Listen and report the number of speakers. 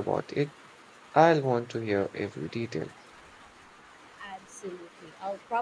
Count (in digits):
2